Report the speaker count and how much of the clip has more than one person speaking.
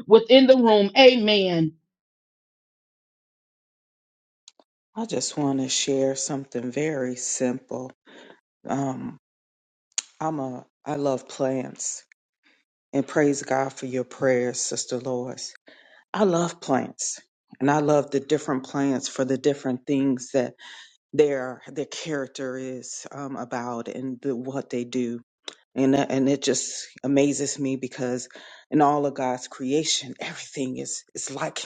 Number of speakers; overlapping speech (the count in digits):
2, no overlap